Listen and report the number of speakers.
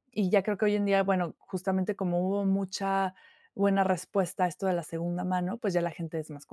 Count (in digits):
1